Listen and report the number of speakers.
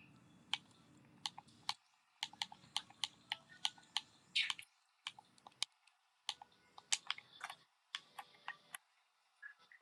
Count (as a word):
zero